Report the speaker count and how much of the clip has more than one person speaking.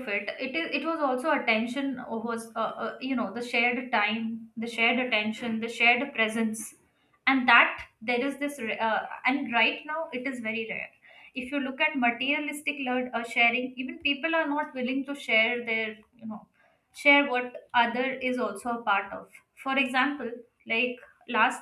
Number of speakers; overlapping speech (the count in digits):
1, no overlap